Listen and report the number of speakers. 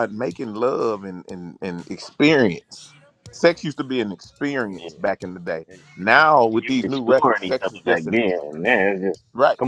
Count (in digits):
2